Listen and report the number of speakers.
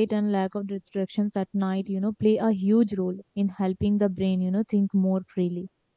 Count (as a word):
one